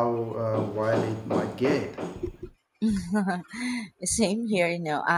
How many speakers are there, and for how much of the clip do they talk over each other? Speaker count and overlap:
2, no overlap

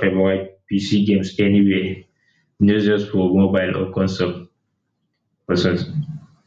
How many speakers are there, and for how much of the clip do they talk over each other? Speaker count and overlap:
1, no overlap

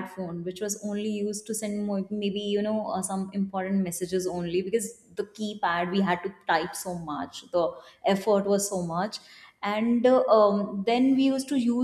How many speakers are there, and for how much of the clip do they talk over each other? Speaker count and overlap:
1, no overlap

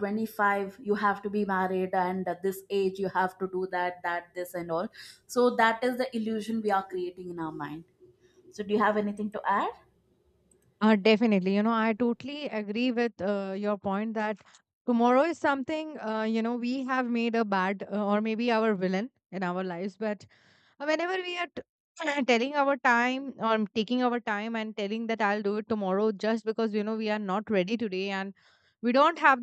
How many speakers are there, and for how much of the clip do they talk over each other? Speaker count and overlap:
2, no overlap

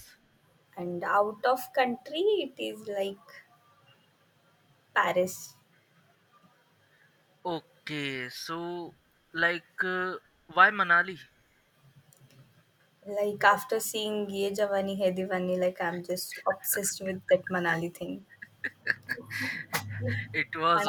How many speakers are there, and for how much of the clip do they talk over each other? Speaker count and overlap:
2, about 1%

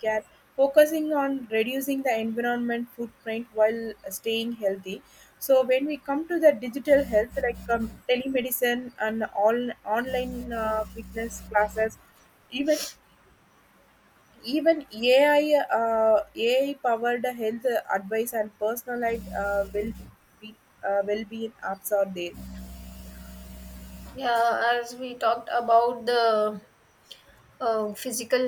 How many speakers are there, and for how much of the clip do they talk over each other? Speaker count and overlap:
2, no overlap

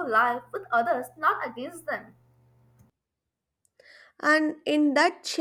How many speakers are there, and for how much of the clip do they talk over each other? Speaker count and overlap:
2, no overlap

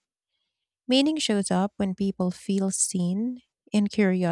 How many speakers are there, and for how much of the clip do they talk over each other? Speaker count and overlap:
1, no overlap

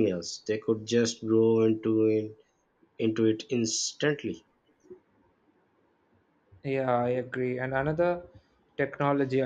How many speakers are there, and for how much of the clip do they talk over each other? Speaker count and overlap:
2, no overlap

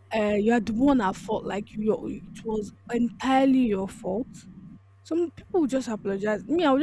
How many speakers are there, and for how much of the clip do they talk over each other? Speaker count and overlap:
1, no overlap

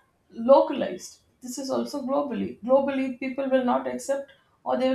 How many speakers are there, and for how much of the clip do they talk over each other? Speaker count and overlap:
1, no overlap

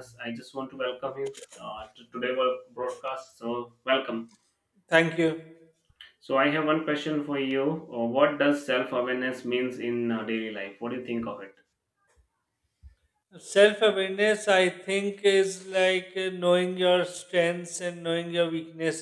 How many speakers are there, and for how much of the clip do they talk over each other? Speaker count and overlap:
2, no overlap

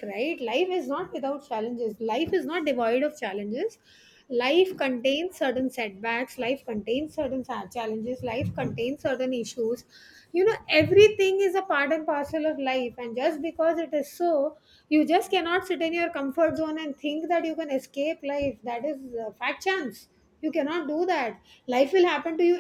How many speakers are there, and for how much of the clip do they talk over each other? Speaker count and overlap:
1, no overlap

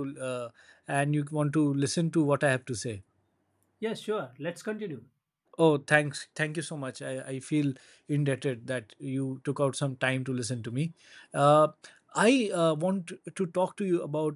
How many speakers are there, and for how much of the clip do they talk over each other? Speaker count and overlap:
2, no overlap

